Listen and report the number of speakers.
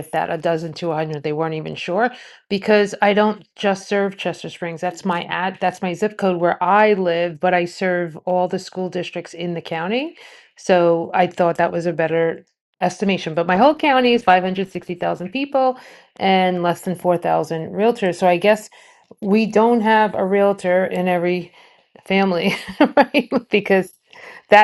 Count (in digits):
1